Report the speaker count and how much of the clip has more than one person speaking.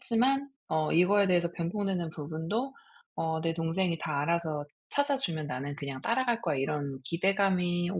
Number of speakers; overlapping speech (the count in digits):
1, no overlap